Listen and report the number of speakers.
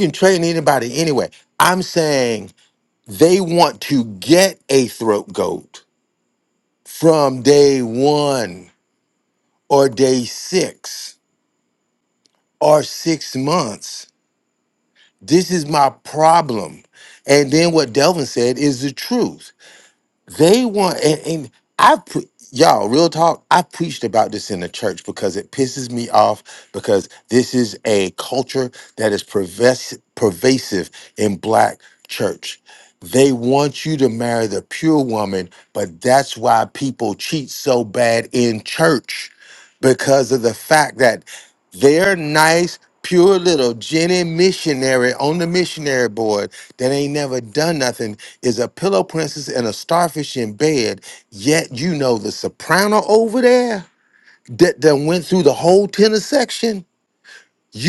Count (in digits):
1